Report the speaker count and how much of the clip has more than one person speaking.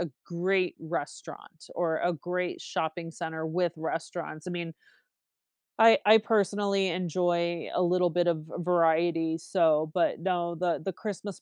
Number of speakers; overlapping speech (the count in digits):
1, no overlap